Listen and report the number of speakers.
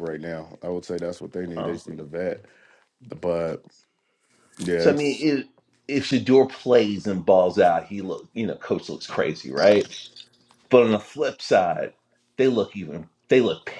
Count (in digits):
2